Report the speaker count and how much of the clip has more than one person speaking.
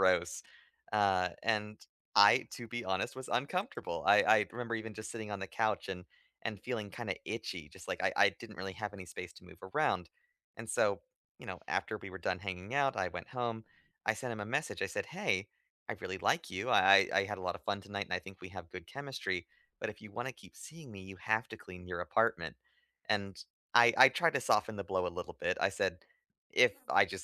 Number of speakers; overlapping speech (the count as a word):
one, no overlap